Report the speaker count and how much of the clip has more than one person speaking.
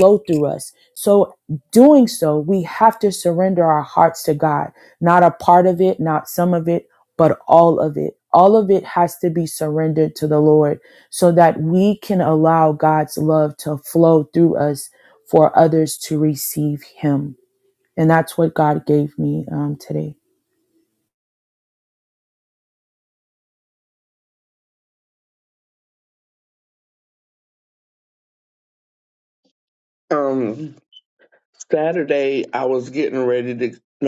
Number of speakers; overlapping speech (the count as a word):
two, no overlap